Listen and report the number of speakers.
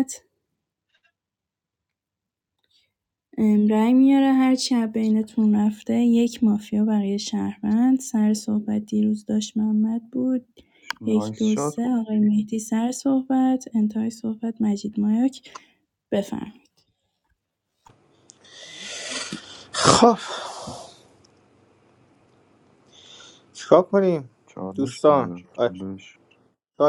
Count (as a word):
three